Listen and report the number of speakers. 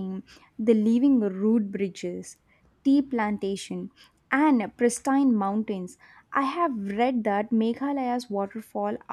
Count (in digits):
1